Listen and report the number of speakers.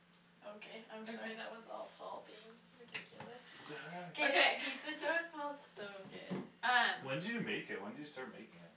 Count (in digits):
3